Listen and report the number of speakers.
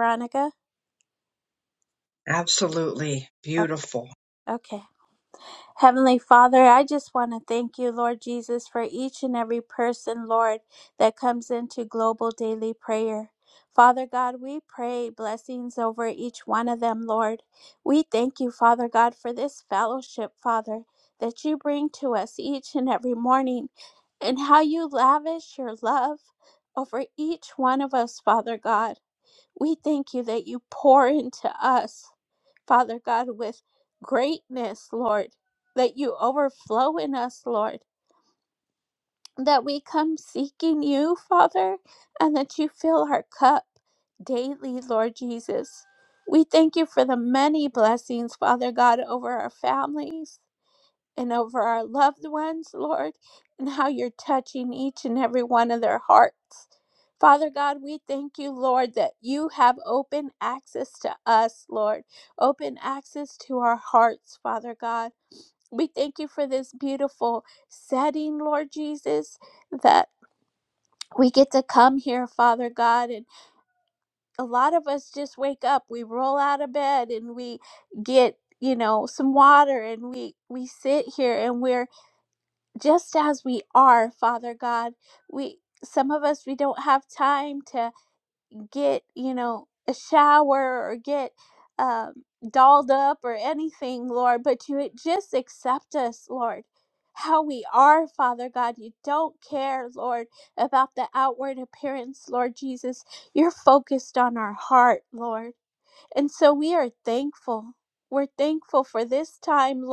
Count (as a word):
two